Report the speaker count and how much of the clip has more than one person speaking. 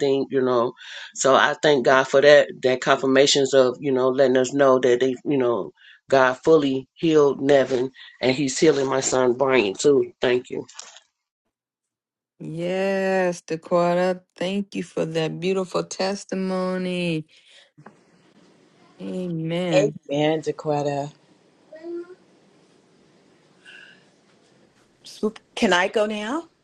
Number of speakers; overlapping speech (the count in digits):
3, about 1%